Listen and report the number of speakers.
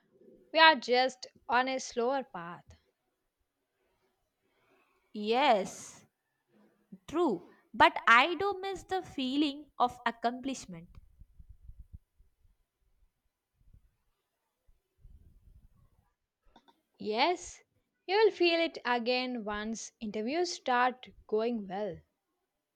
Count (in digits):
2